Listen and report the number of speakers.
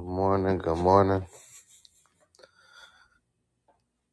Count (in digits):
1